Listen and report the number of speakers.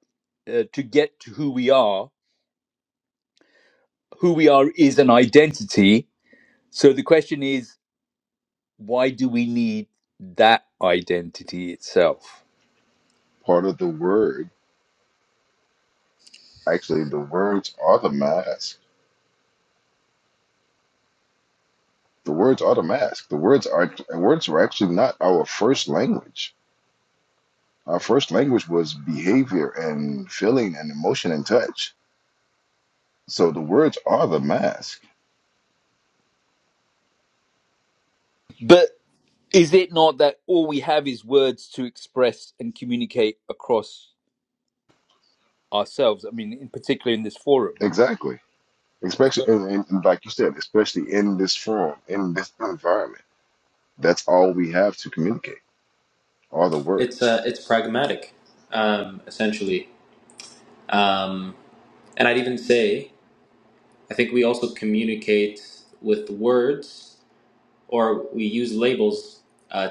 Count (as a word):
three